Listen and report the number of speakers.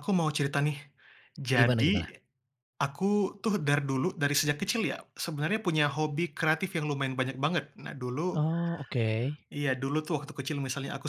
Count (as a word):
two